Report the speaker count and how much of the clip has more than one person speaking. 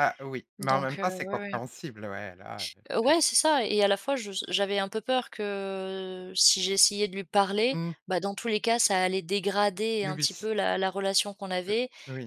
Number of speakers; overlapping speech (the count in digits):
2, about 13%